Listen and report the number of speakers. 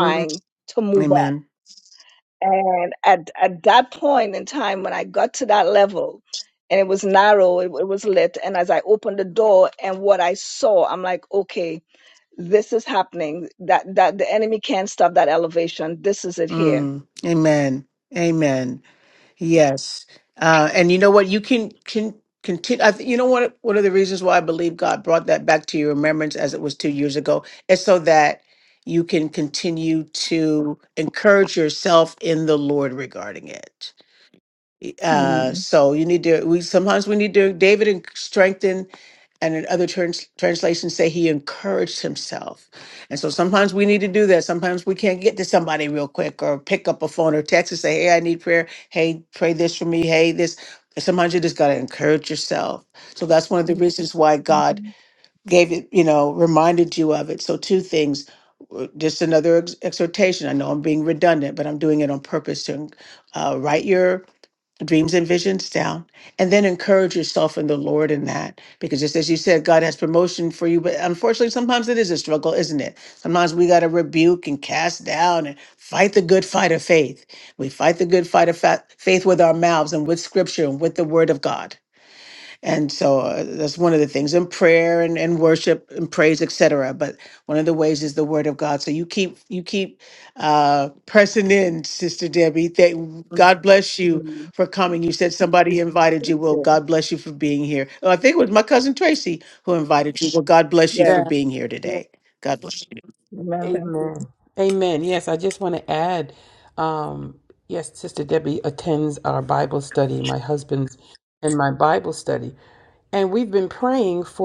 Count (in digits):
3